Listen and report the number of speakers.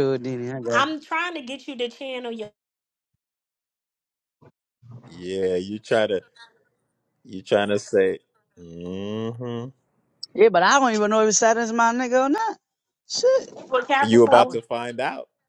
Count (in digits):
3